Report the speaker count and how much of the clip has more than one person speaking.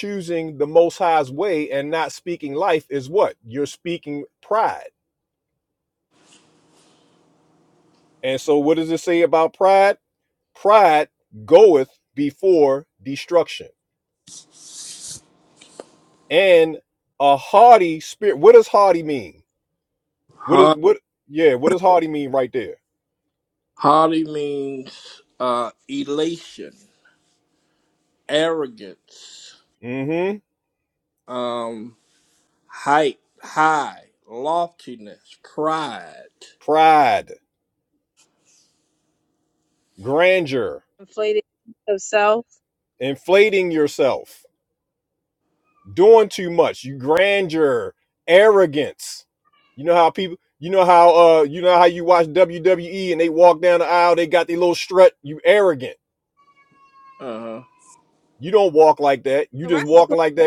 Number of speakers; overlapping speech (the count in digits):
3, about 1%